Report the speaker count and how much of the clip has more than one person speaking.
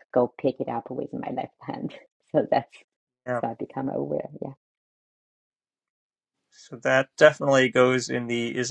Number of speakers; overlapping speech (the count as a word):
two, no overlap